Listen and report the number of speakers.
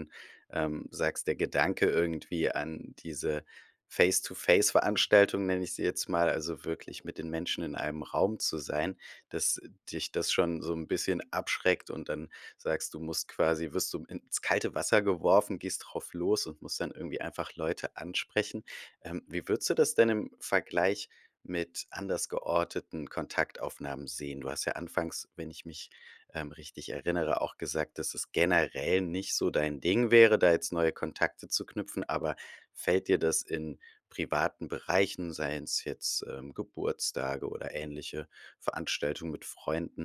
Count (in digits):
1